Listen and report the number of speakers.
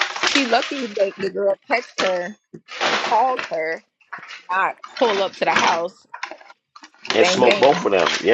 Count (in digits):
2